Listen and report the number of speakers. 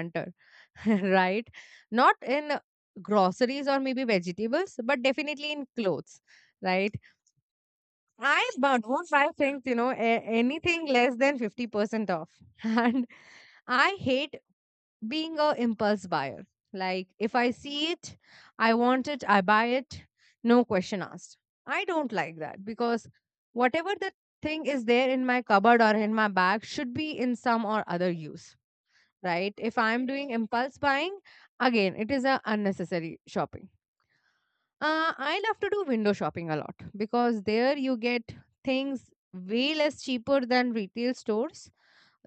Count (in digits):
1